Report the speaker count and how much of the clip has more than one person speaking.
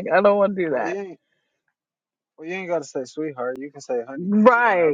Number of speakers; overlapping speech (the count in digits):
2, about 13%